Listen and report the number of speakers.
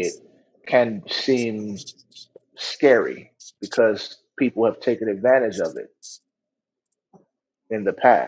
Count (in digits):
1